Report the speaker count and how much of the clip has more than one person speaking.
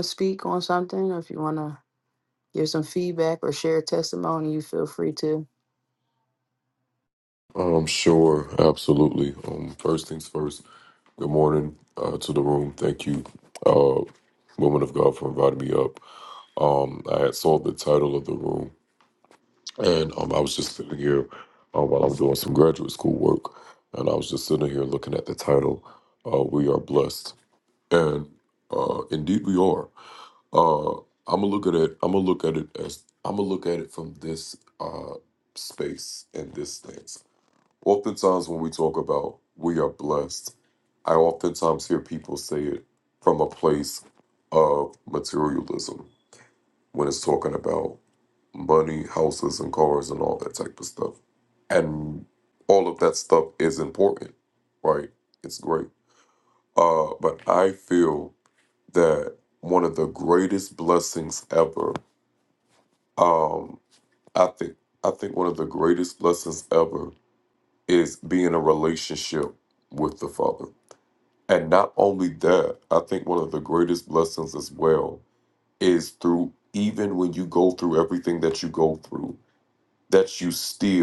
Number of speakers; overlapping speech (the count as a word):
two, no overlap